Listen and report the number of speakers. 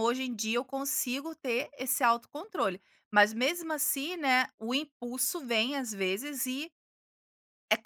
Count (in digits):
1